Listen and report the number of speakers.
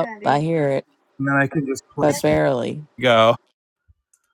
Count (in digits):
2